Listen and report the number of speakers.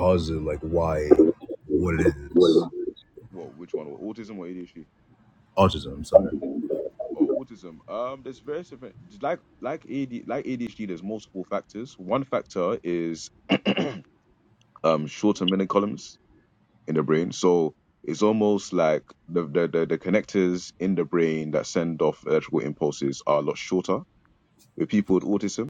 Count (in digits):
2